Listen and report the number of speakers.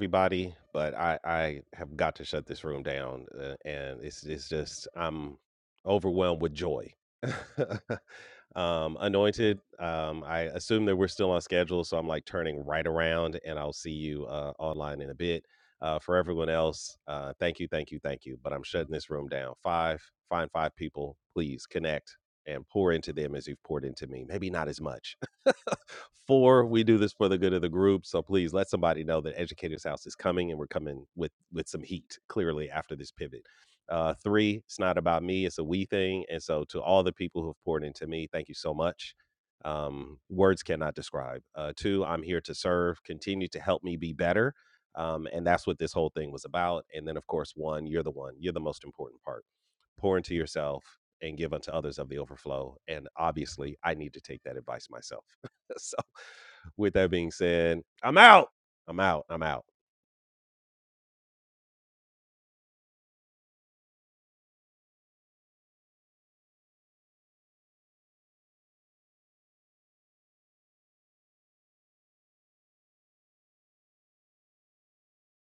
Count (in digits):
1